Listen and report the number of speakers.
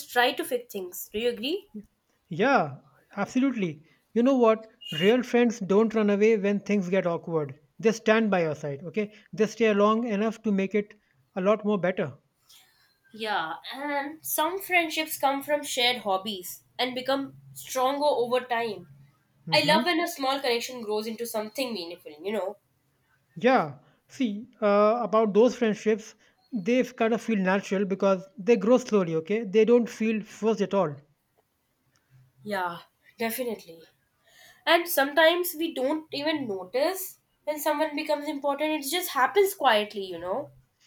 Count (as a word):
two